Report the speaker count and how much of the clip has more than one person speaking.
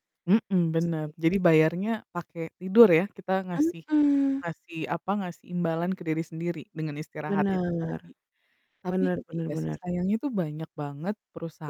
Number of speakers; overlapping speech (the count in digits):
2, about 17%